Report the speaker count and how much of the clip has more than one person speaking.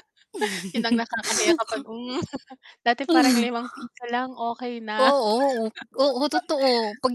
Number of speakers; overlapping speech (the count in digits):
2, about 3%